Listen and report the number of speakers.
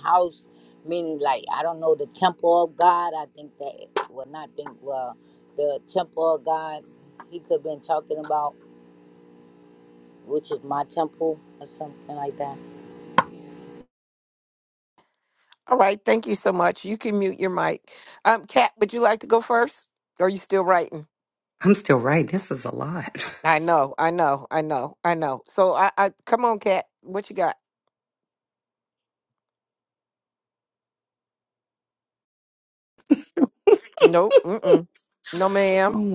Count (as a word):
three